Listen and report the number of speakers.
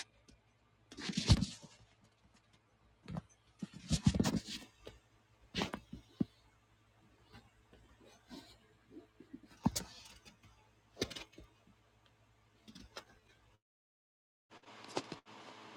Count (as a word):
zero